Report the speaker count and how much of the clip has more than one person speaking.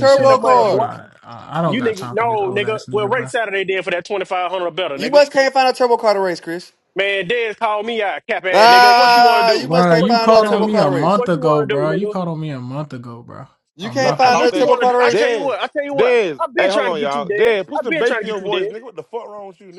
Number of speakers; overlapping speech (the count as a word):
four, about 55%